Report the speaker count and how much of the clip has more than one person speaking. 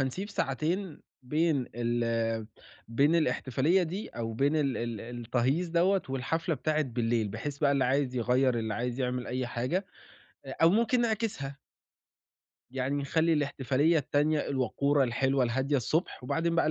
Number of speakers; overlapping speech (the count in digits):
1, no overlap